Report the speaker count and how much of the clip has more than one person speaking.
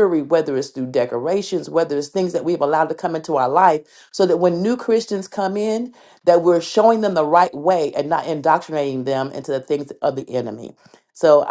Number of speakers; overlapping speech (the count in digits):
1, no overlap